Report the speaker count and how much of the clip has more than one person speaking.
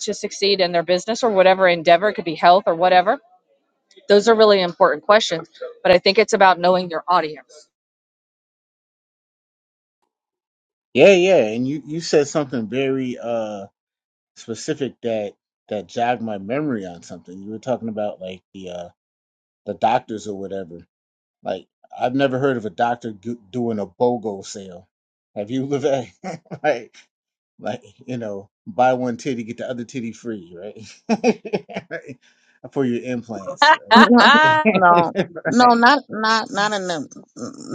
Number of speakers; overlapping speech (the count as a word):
three, about 2%